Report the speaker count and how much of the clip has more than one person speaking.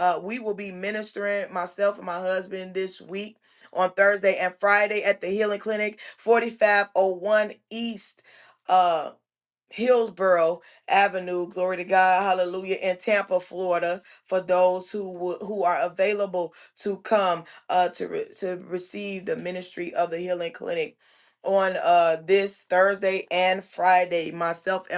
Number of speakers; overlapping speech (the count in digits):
1, no overlap